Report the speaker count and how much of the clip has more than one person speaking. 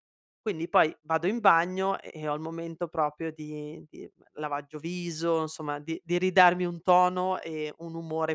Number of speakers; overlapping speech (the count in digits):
1, no overlap